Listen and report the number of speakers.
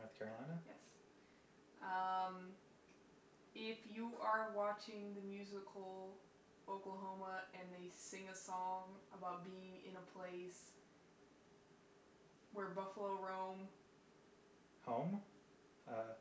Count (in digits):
2